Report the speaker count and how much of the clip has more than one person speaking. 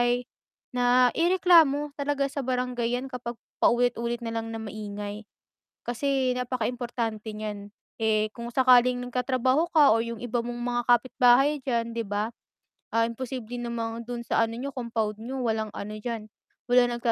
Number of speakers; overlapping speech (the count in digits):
1, no overlap